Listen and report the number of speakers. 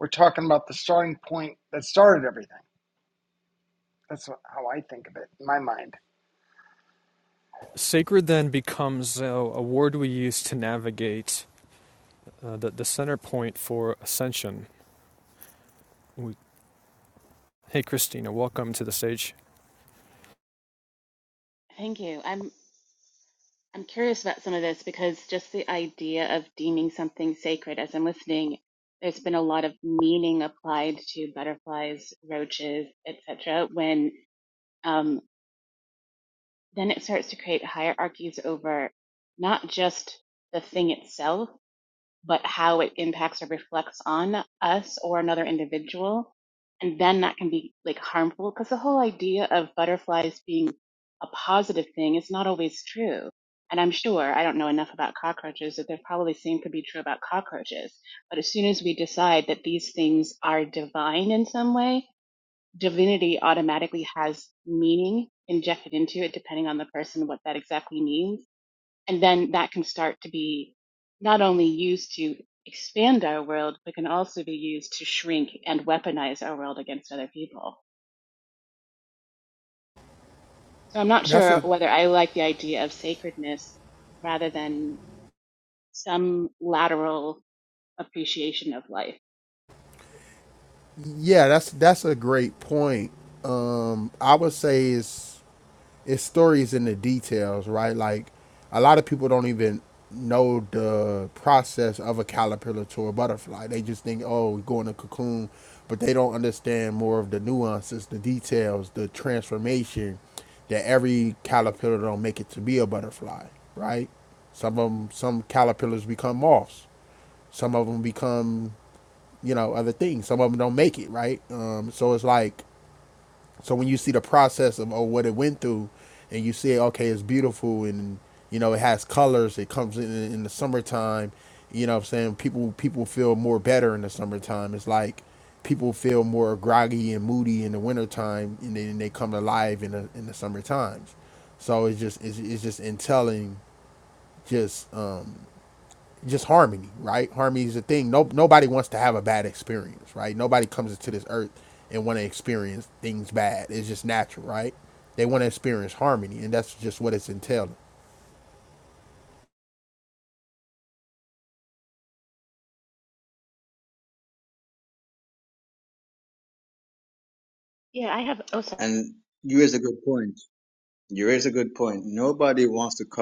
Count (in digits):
5